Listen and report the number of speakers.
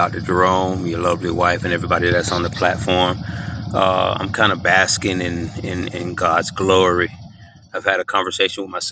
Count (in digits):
1